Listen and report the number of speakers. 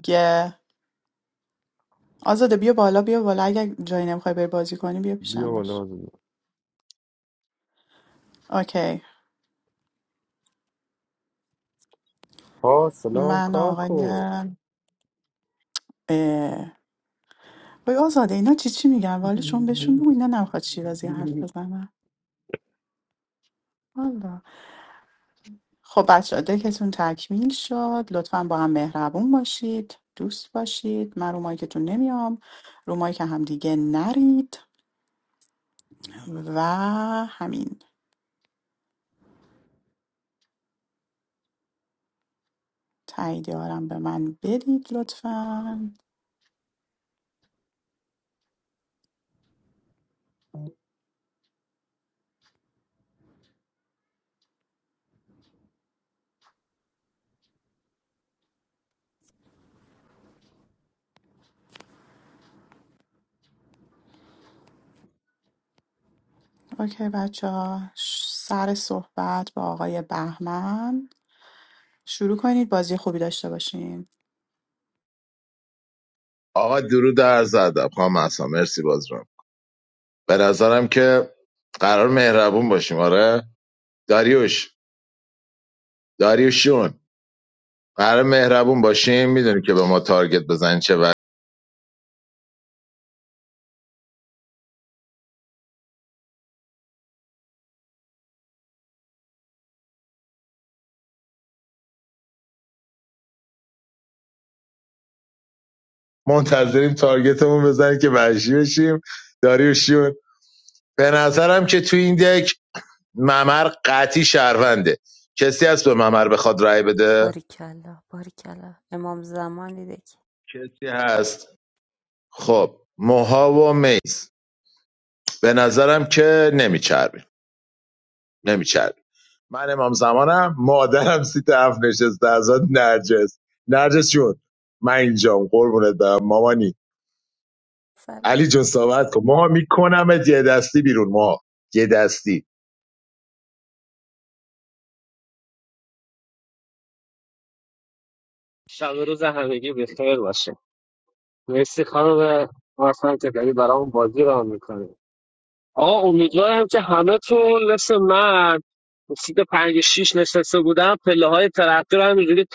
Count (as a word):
five